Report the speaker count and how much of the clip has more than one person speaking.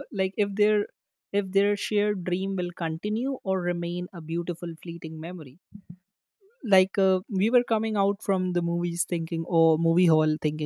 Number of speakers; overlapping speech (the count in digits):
1, no overlap